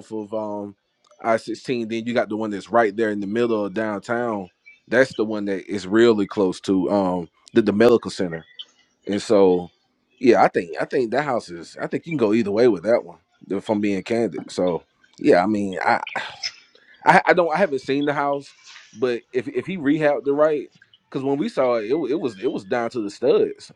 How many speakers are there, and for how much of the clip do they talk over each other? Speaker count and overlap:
1, no overlap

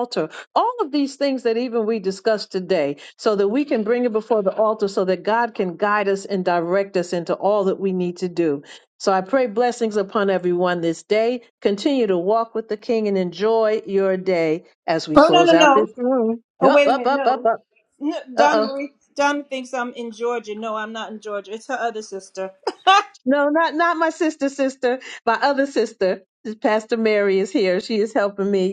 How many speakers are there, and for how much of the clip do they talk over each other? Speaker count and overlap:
2, about 6%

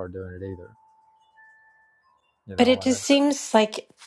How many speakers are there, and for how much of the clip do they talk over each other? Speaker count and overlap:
2, about 10%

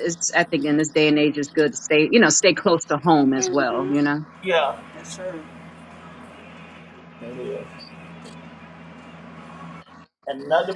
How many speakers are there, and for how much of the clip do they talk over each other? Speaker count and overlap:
3, about 6%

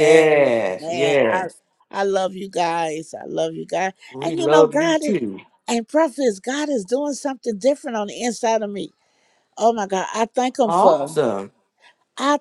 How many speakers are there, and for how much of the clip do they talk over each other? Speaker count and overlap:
2, about 24%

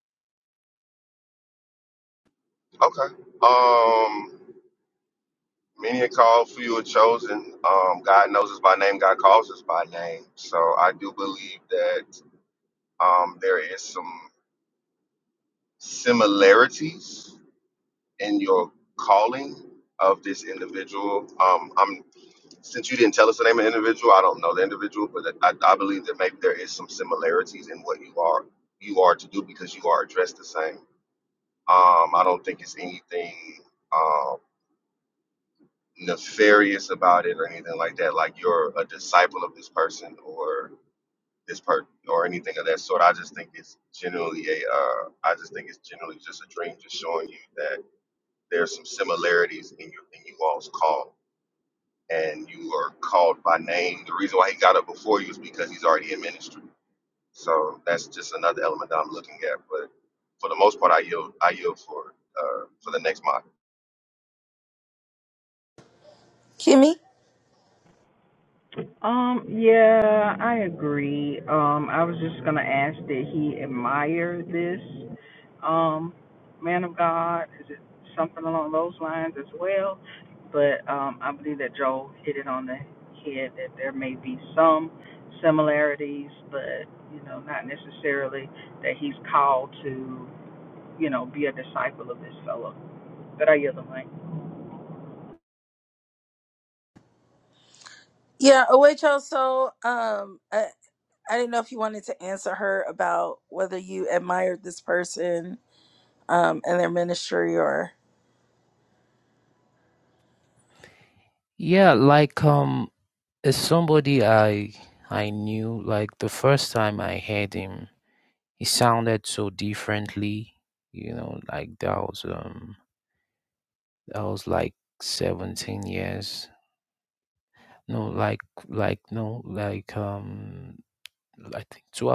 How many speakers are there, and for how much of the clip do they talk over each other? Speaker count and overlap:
4, no overlap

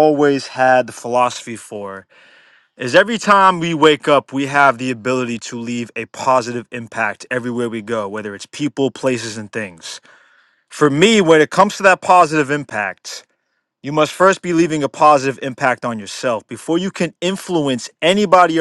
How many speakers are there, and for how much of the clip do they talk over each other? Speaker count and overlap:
1, no overlap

